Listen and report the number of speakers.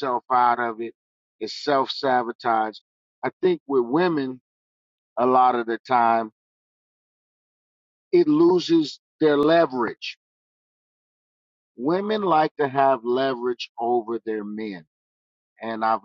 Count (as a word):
one